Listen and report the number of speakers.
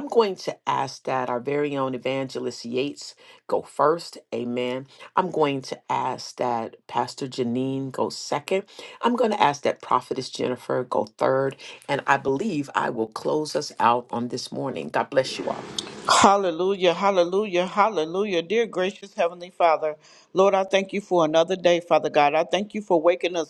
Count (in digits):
2